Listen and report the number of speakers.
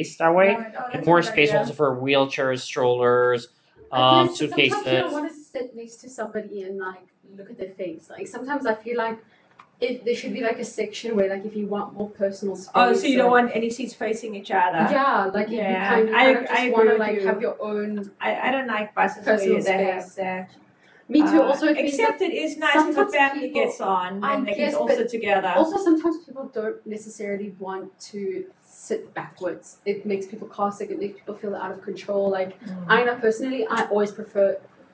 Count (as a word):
three